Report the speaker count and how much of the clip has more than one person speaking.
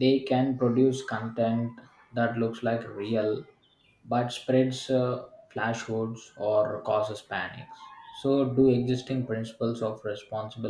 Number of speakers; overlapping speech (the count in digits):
1, no overlap